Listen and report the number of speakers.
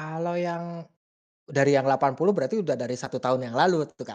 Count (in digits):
1